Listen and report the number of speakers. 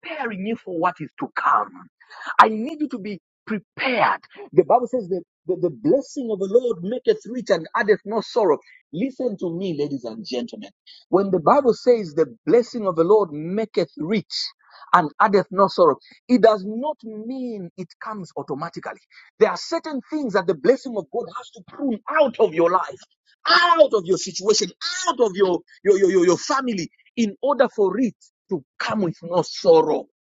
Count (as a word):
one